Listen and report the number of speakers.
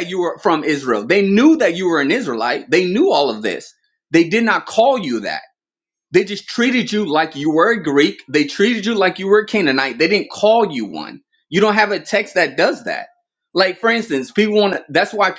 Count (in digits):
1